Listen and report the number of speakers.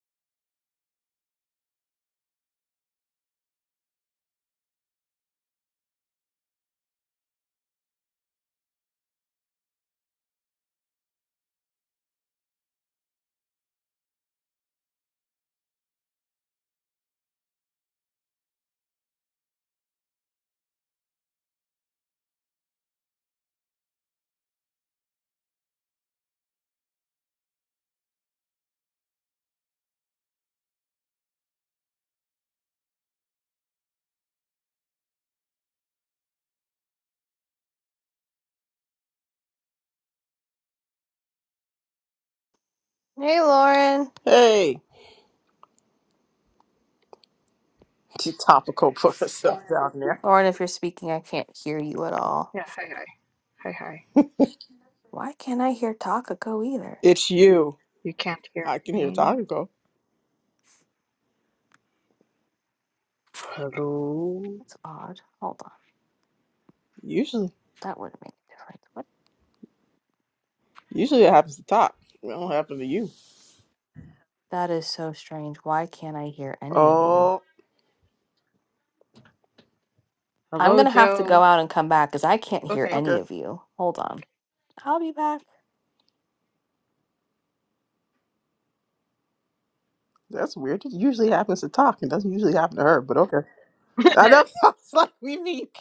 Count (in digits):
3